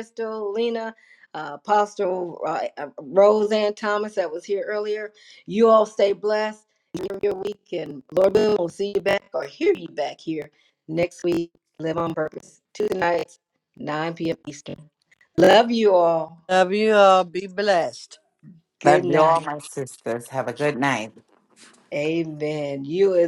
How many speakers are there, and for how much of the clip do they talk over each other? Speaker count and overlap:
three, about 3%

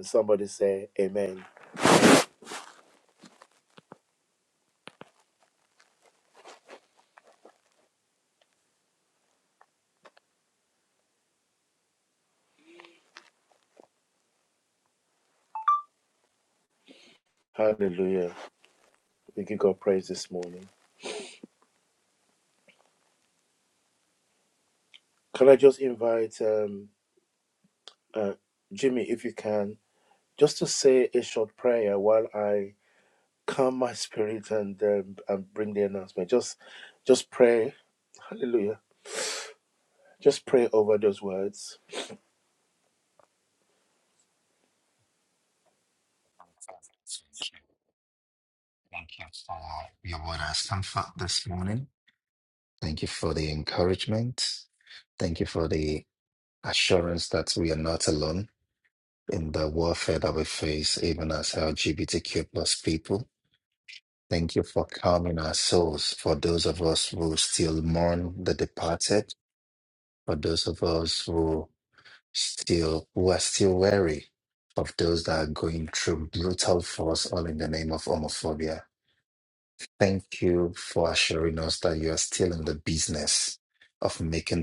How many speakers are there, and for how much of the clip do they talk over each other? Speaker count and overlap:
two, no overlap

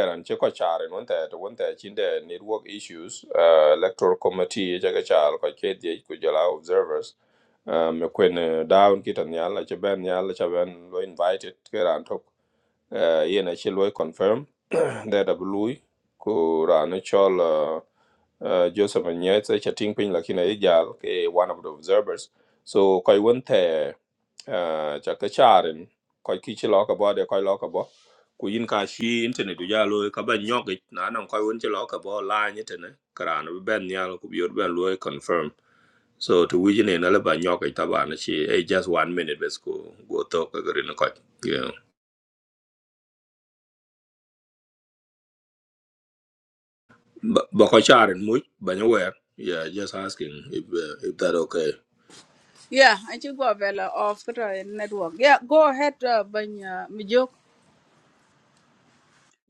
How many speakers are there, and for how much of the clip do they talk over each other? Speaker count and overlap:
two, no overlap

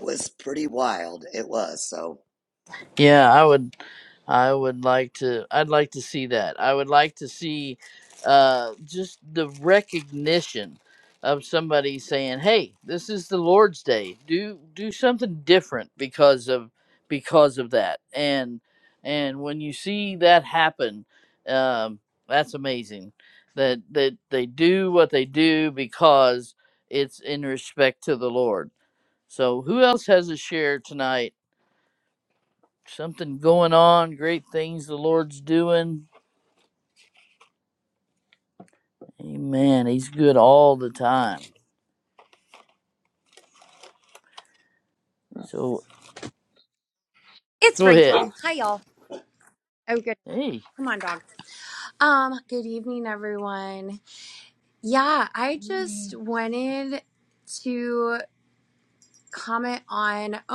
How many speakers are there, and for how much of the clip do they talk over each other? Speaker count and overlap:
three, about 1%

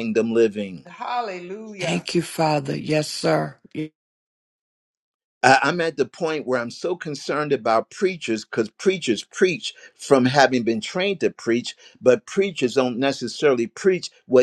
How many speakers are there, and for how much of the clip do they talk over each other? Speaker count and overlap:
three, about 1%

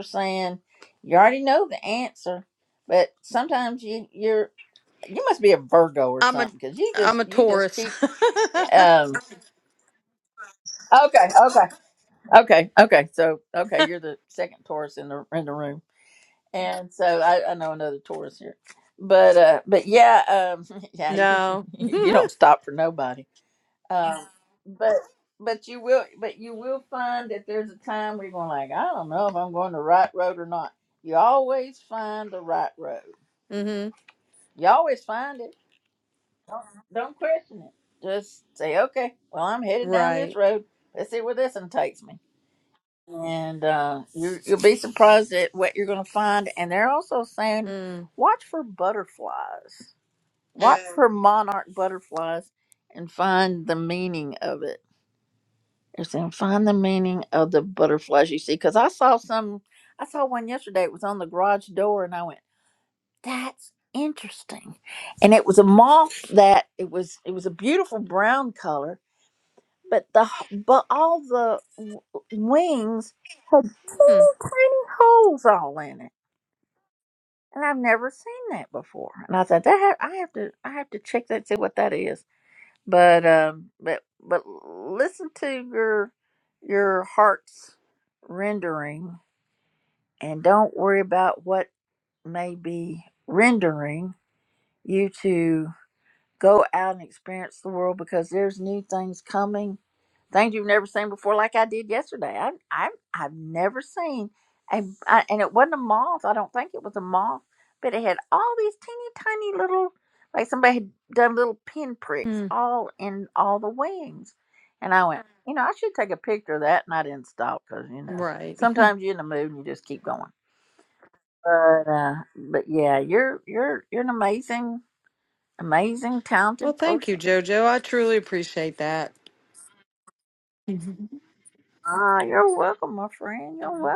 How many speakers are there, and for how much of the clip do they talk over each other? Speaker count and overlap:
two, about 2%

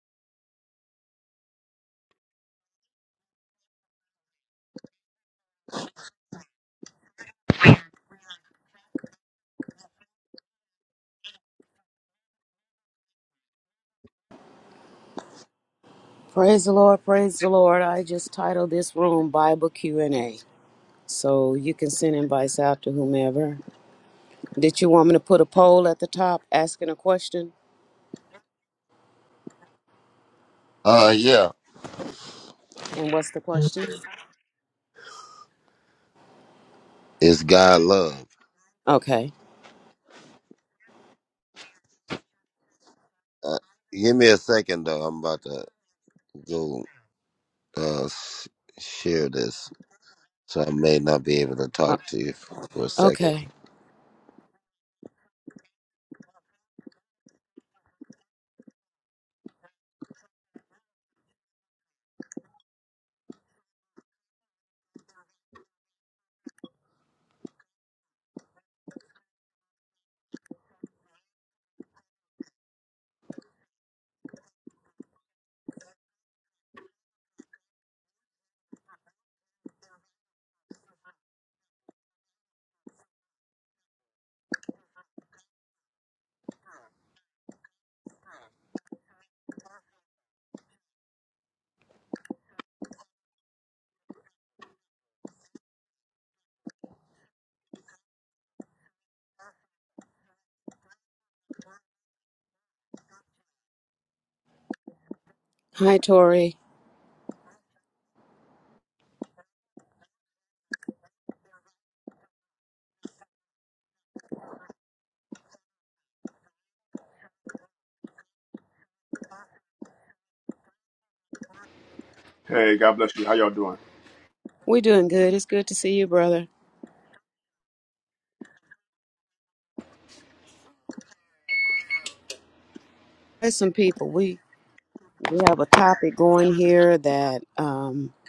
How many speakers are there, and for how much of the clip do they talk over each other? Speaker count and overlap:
three, under 1%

